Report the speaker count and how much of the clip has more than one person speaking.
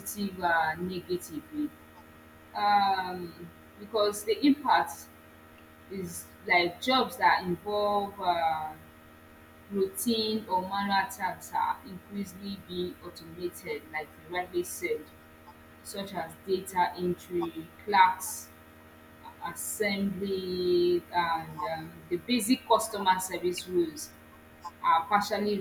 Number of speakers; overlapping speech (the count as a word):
one, no overlap